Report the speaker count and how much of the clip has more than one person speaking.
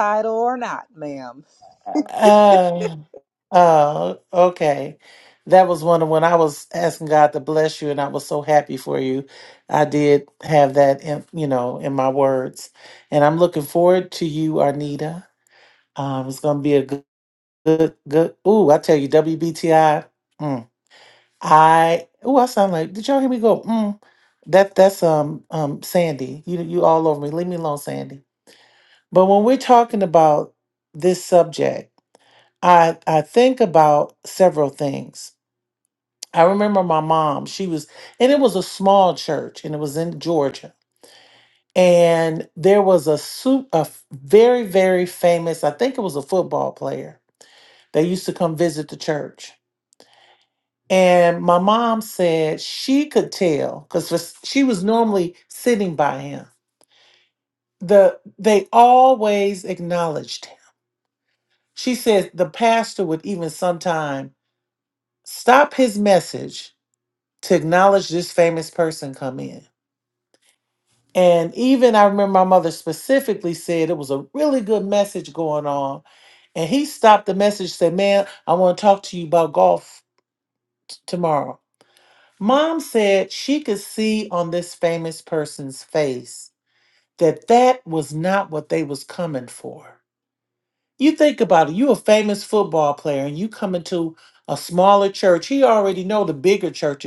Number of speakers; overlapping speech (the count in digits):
2, no overlap